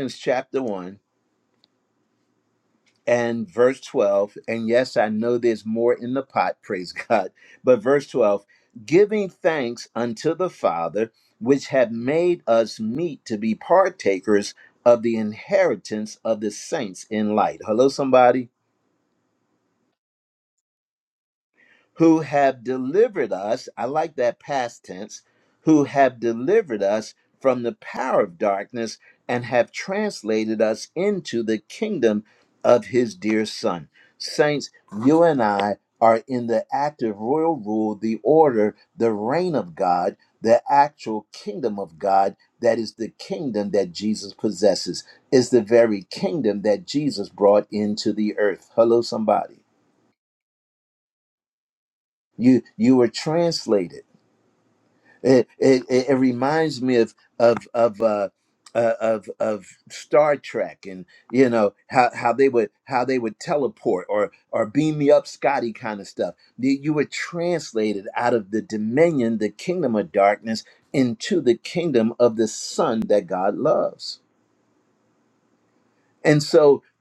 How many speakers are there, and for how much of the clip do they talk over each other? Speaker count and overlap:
1, no overlap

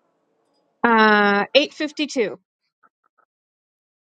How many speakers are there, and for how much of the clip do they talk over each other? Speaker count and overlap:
1, no overlap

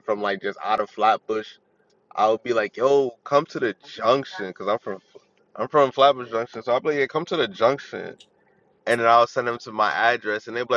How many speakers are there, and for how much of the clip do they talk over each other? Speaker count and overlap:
1, no overlap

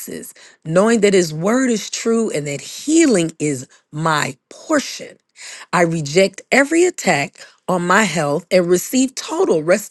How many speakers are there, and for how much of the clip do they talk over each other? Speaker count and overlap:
1, no overlap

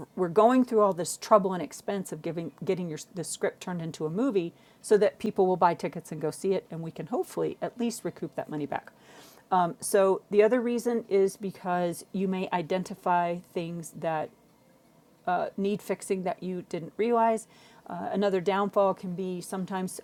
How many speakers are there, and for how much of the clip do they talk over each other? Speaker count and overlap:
1, no overlap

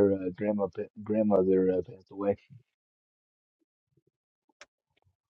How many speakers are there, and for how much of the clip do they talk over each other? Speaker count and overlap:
1, no overlap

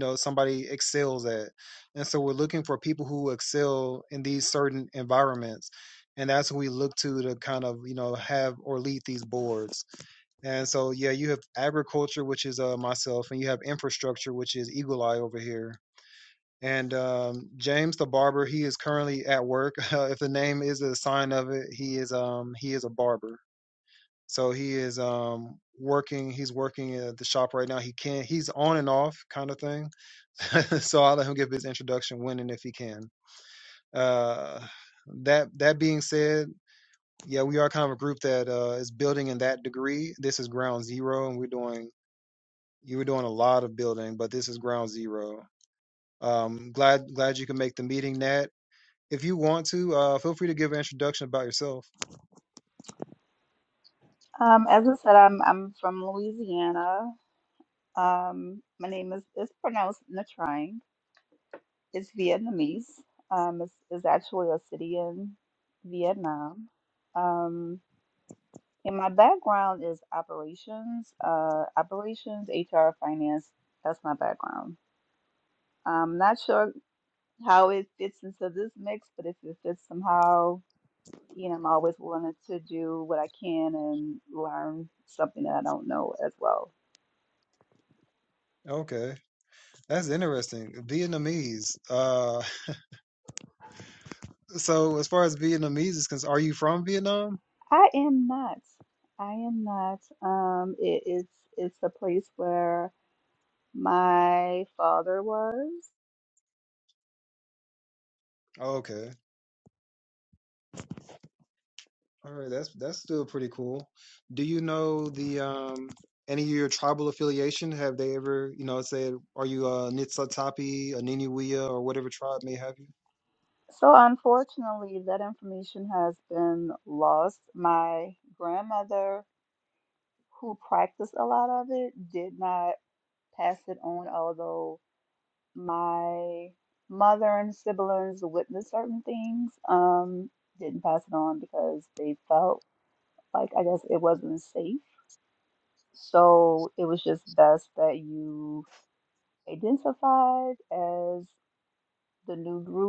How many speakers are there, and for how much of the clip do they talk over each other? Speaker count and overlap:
2, no overlap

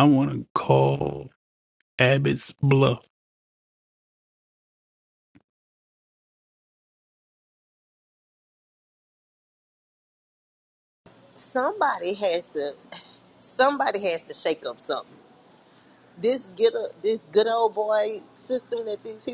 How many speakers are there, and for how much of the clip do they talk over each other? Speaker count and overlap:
2, no overlap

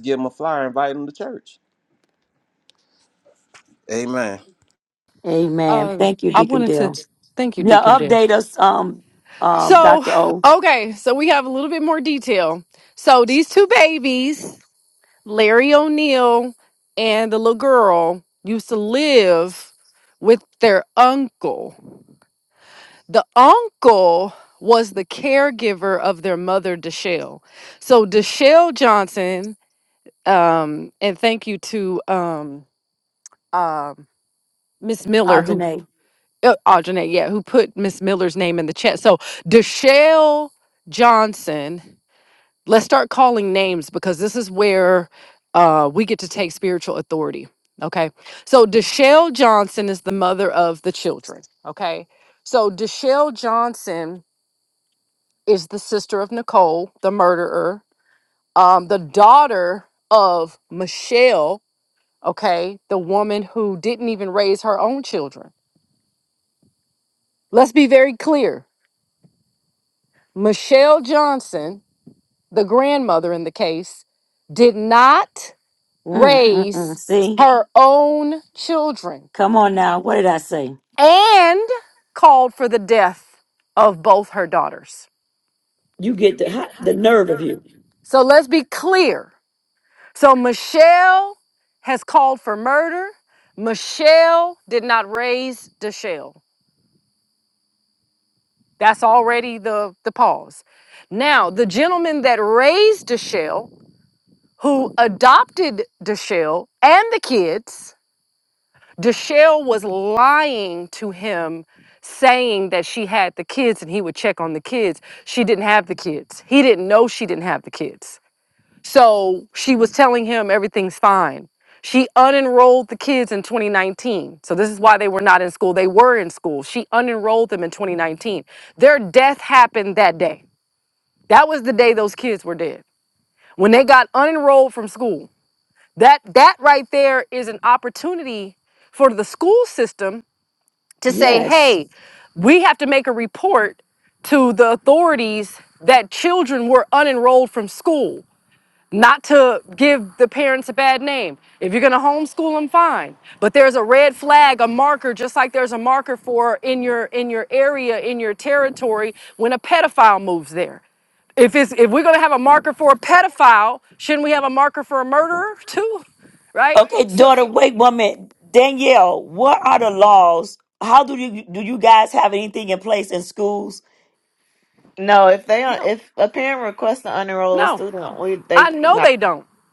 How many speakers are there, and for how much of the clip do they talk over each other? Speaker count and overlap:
4, about 3%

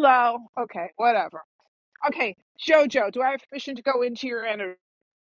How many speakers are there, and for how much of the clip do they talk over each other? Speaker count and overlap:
1, no overlap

